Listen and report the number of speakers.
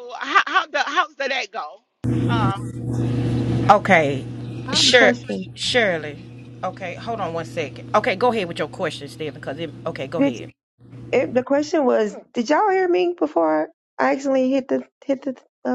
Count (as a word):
three